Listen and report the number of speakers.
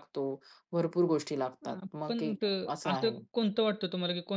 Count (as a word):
two